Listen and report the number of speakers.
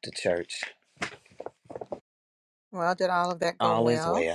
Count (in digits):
2